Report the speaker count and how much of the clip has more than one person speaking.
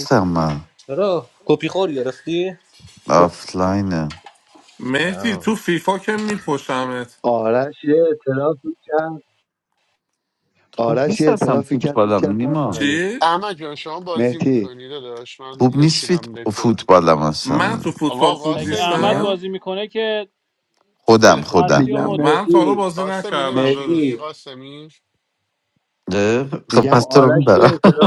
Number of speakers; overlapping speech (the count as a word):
six, about 35%